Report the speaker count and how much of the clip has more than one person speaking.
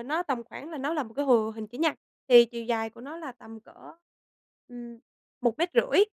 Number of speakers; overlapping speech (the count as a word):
one, no overlap